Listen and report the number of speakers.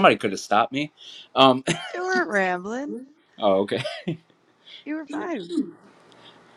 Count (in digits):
2